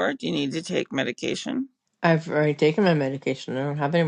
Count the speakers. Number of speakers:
2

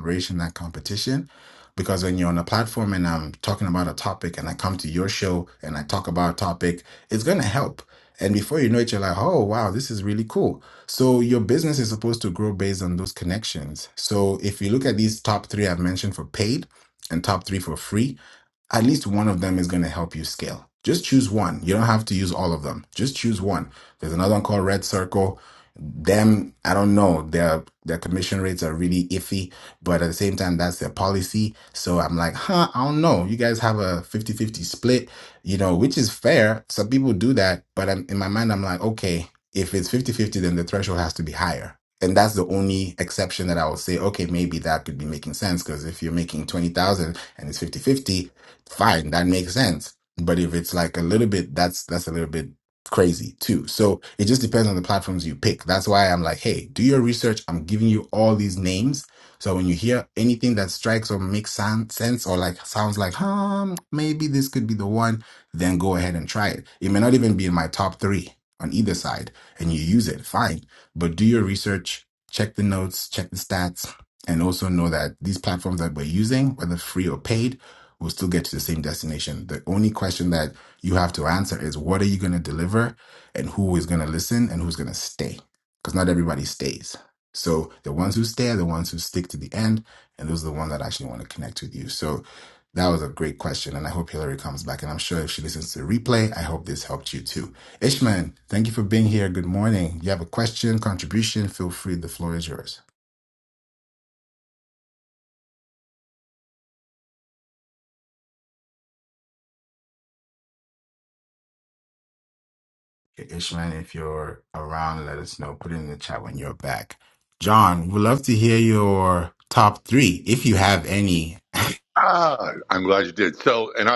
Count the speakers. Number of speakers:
2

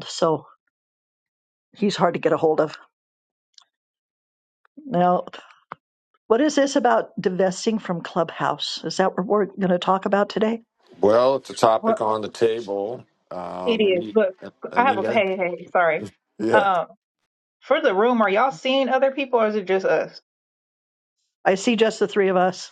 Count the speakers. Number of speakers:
3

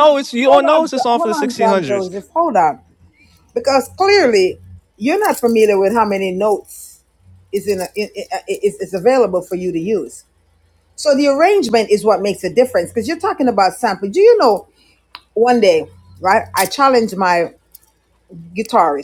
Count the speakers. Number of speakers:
2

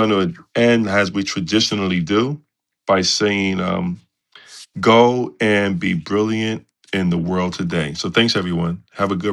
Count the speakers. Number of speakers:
1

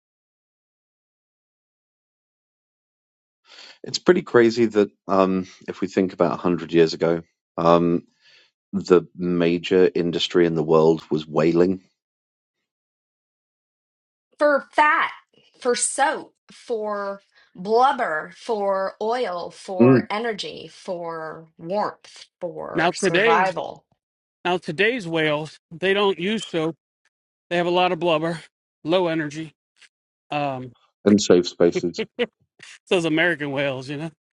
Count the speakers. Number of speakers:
3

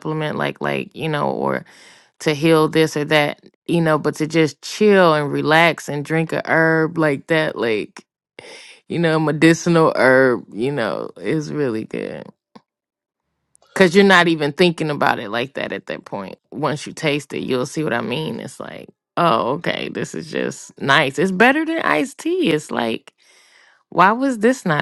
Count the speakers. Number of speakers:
1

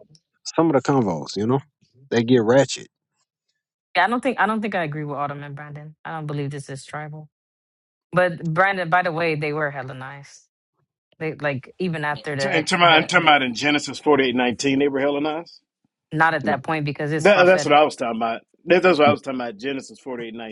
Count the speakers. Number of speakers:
3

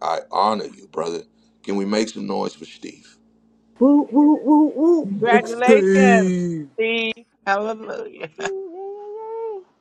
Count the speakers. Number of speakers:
4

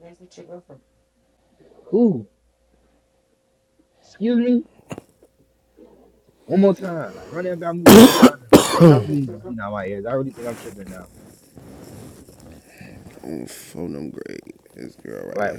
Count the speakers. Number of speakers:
3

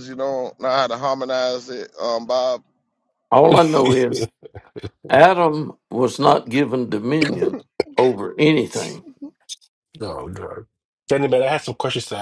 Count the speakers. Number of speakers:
3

